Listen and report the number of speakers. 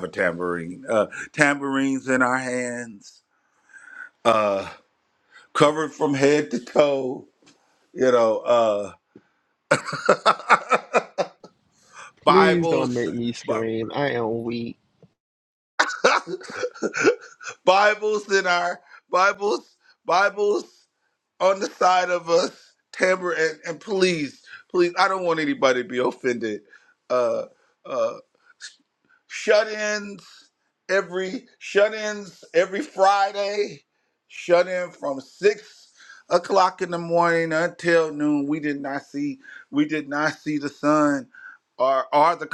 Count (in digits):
2